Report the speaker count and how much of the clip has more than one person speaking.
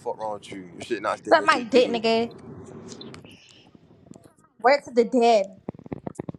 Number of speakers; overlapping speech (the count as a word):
two, about 11%